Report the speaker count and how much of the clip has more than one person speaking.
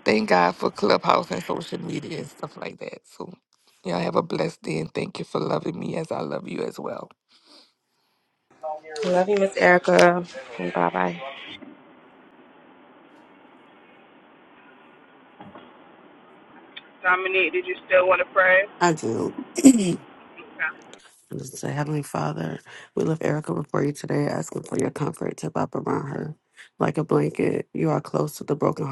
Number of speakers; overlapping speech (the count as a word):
four, no overlap